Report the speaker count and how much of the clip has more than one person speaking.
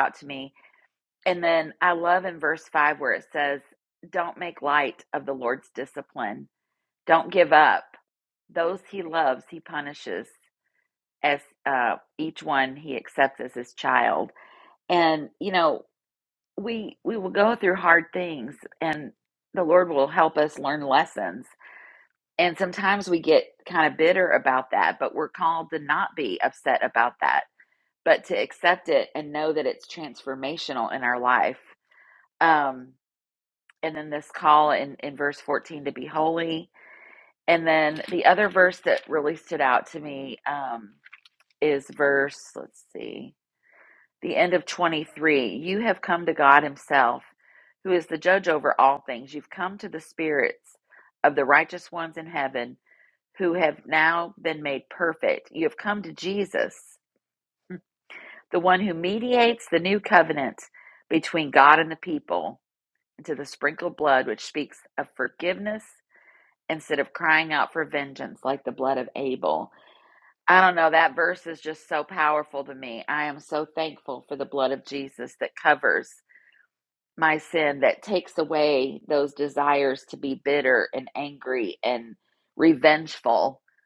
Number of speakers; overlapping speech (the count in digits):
1, no overlap